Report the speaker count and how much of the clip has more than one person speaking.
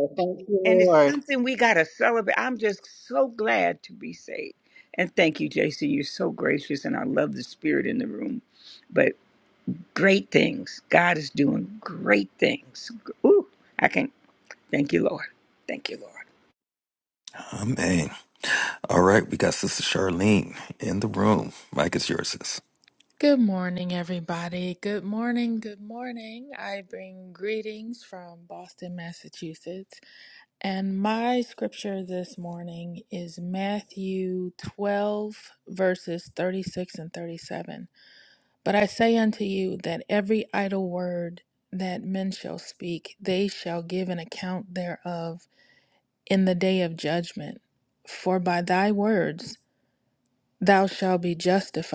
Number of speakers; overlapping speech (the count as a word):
four, about 1%